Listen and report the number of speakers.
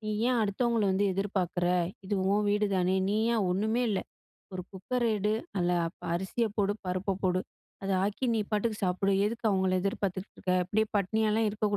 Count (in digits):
1